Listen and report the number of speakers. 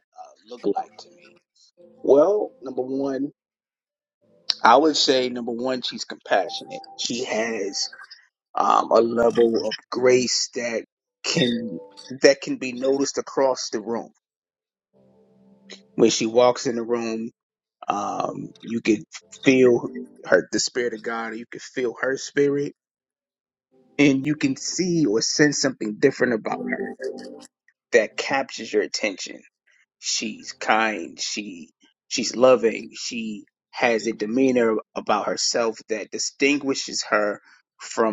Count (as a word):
one